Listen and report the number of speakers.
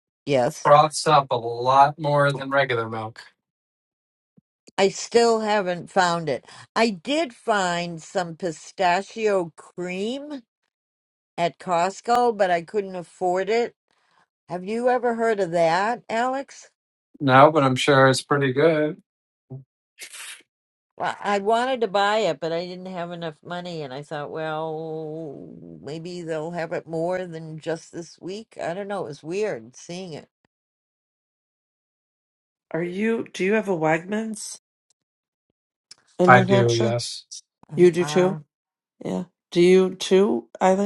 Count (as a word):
three